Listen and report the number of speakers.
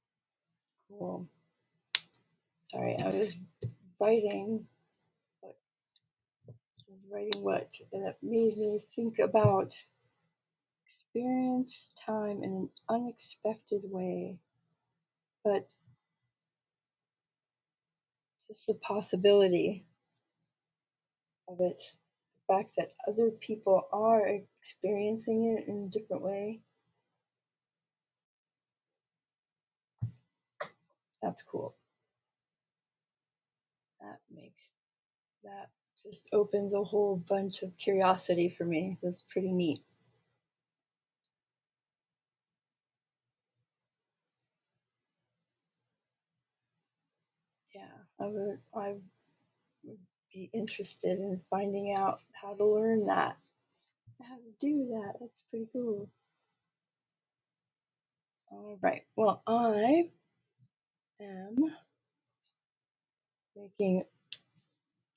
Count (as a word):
one